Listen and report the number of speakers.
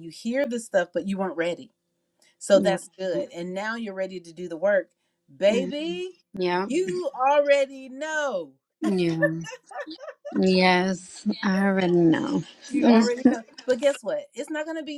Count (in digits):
2